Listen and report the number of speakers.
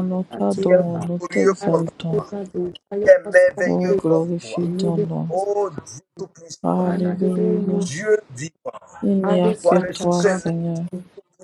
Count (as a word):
three